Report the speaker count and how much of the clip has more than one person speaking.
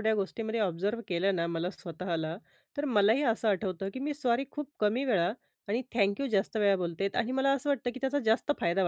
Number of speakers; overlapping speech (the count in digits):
1, no overlap